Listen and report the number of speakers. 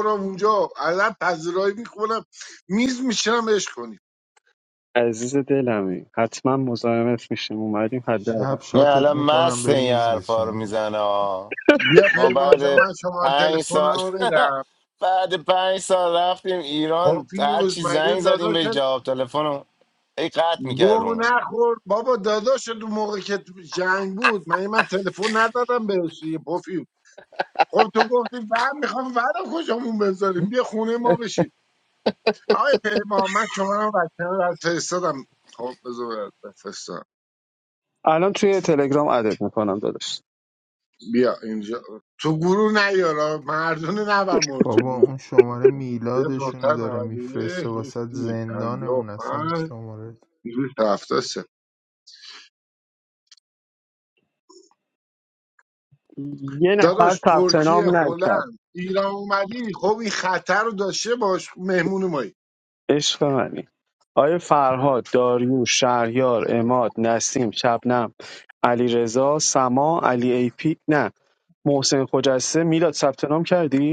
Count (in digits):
4